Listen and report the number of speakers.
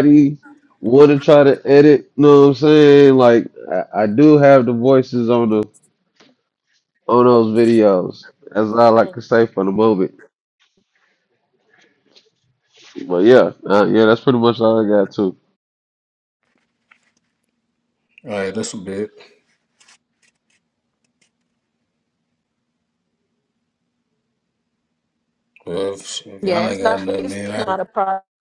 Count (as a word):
three